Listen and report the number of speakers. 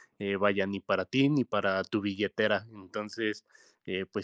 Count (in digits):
1